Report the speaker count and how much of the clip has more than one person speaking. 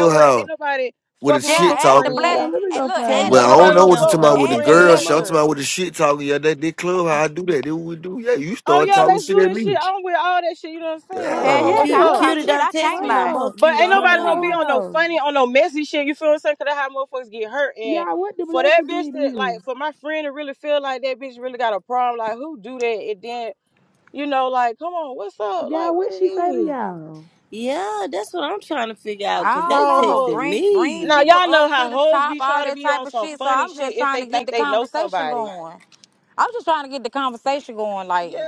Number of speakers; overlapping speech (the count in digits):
5, about 47%